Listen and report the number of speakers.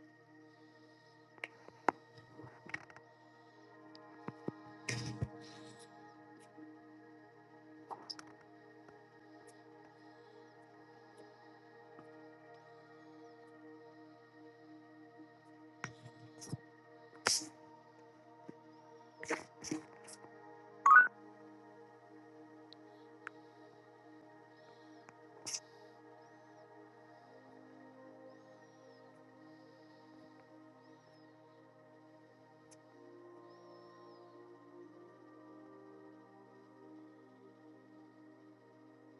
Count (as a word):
zero